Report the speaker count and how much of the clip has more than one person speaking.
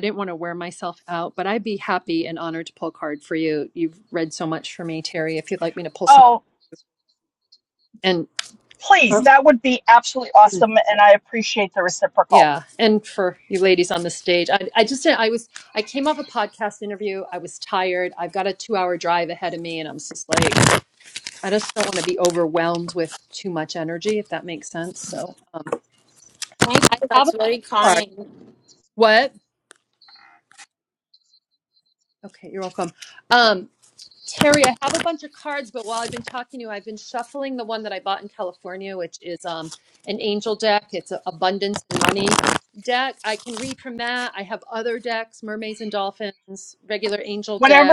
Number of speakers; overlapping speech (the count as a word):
three, about 3%